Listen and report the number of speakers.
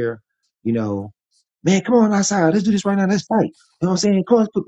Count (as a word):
one